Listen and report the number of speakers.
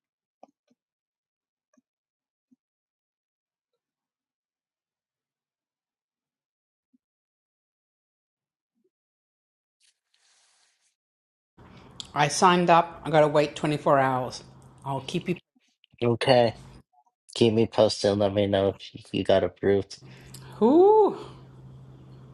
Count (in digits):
2